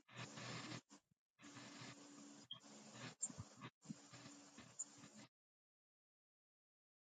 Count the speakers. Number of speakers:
0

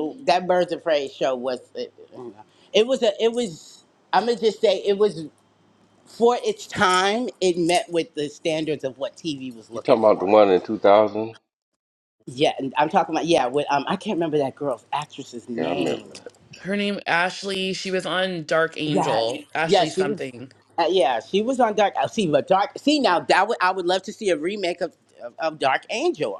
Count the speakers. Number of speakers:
3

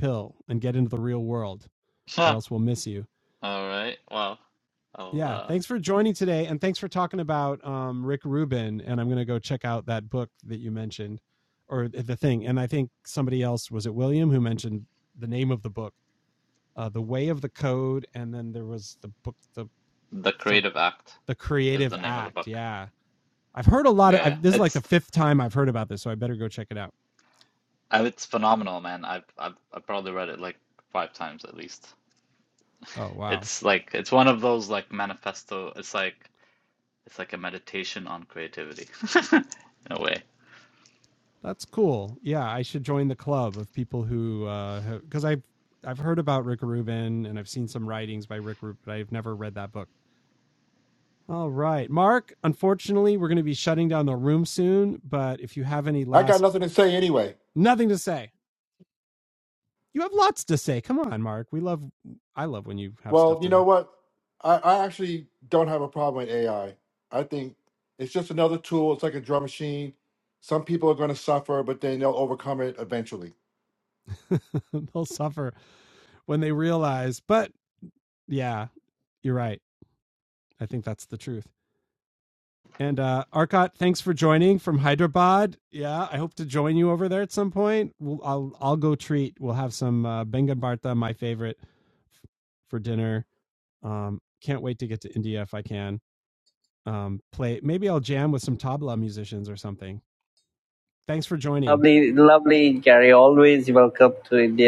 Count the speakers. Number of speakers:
4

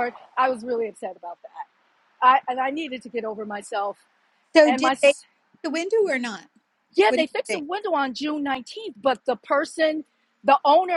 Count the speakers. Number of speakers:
2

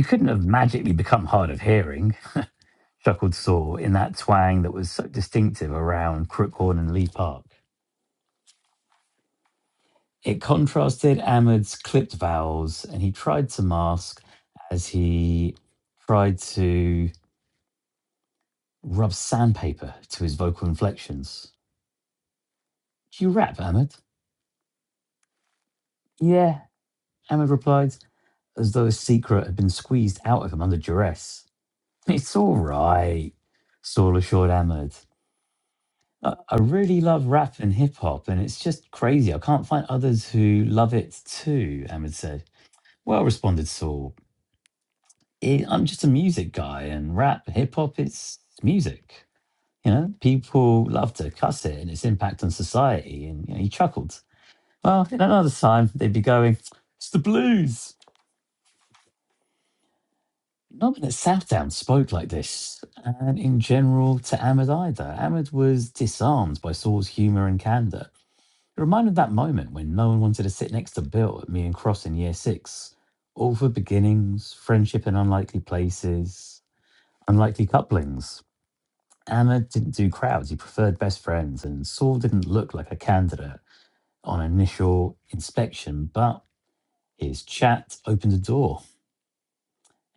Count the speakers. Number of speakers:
1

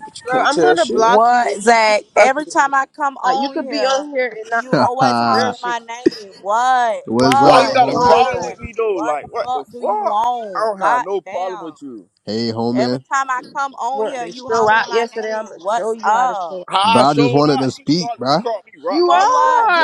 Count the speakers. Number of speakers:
4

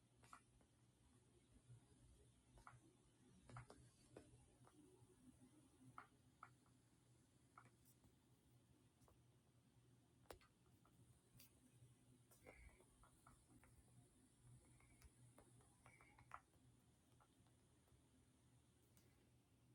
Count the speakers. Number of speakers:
0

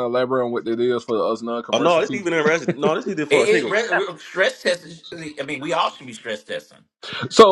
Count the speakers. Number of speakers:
3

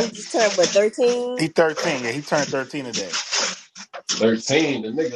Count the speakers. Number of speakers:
3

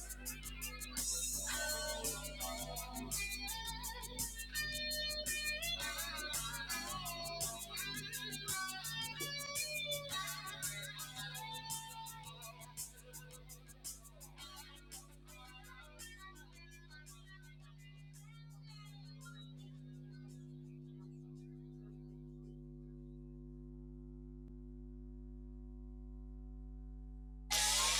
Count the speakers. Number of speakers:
0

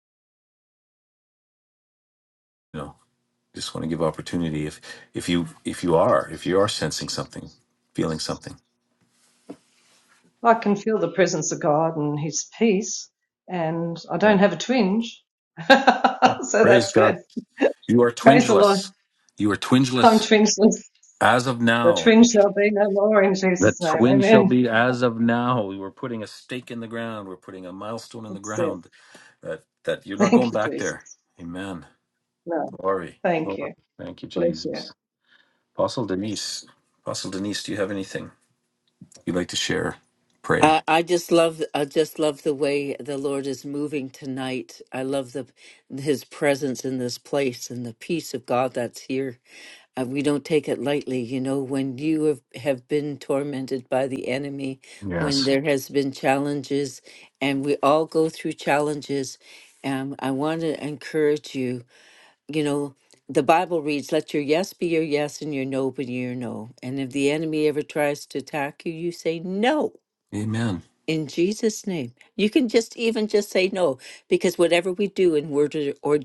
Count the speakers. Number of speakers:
3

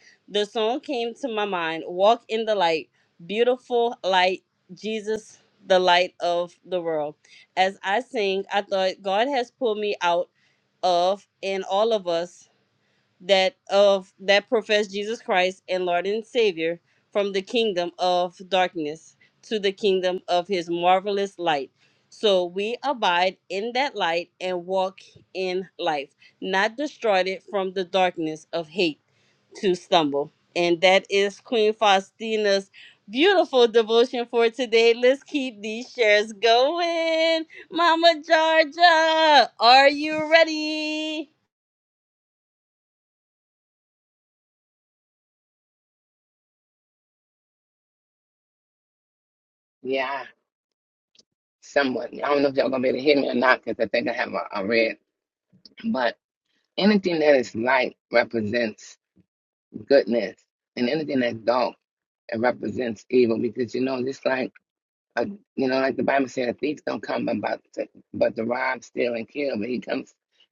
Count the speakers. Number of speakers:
2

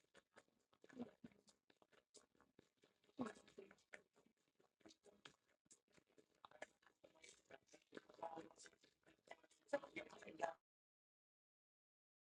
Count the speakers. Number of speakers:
0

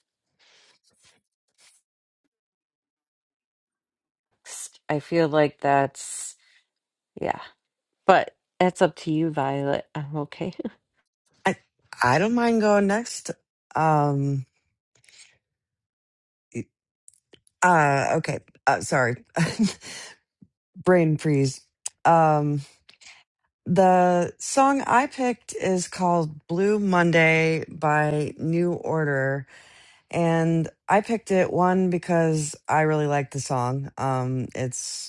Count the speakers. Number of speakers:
2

